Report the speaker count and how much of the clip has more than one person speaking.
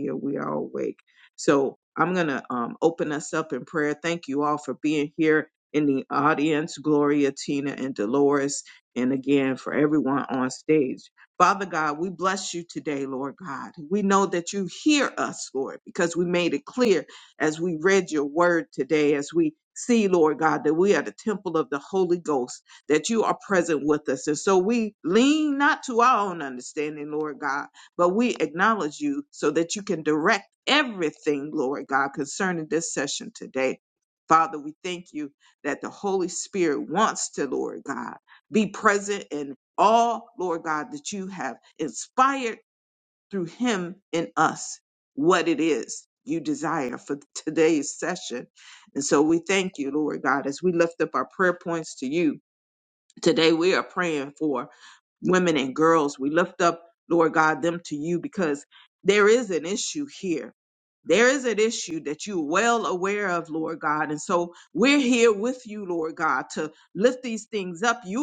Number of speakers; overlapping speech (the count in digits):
1, no overlap